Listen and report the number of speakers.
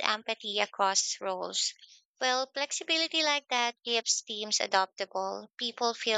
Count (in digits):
1